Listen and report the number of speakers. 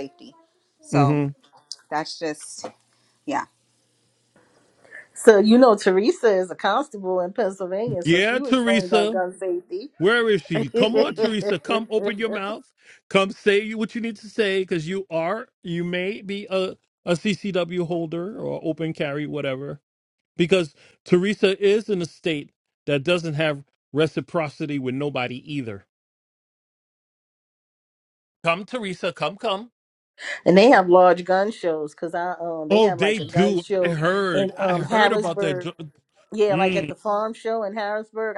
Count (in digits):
3